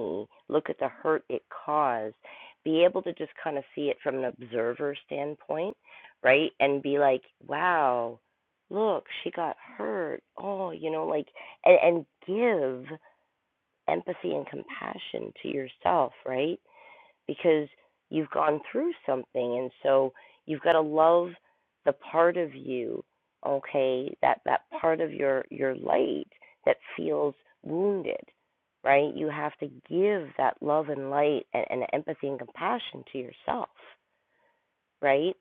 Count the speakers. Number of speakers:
1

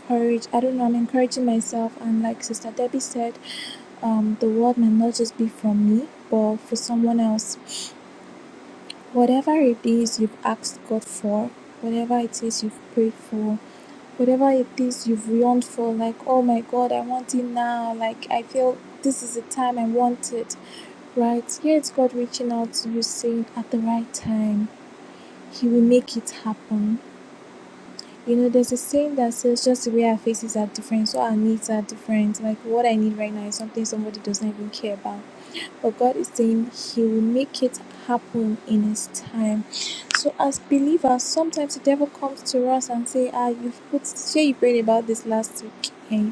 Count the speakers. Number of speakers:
1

